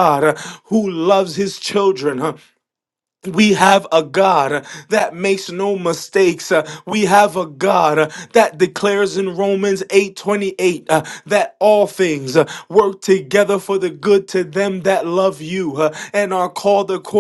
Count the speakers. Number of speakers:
one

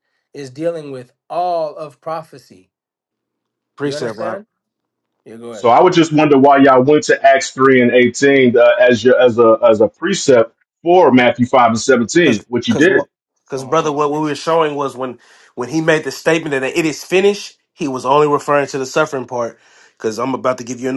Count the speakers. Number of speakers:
three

